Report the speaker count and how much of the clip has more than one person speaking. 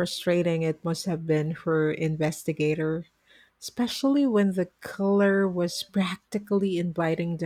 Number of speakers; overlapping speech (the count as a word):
one, no overlap